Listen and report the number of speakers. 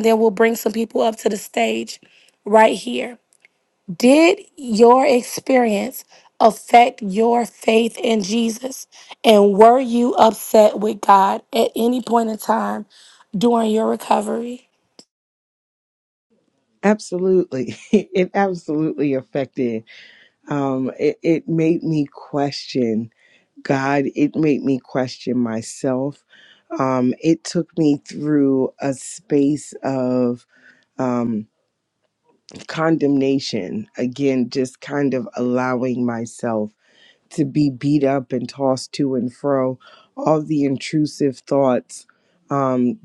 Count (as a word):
two